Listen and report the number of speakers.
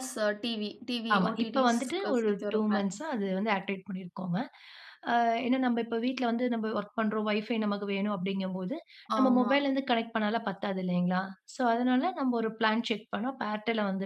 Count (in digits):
2